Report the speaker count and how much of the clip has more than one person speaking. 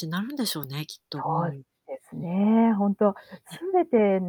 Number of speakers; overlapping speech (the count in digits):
2, about 8%